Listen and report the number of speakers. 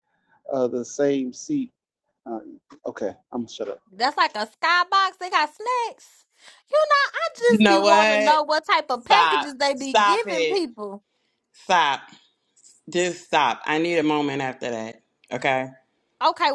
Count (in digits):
3